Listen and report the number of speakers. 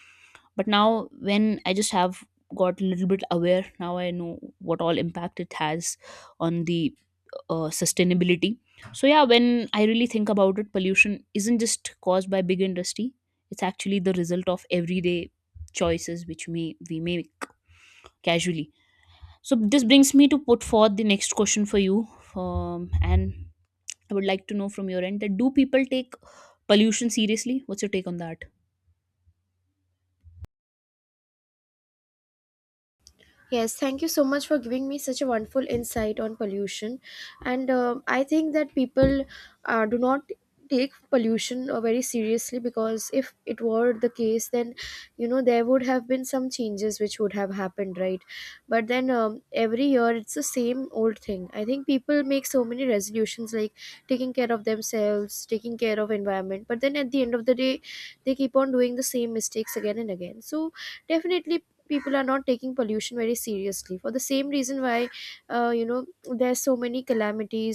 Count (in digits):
2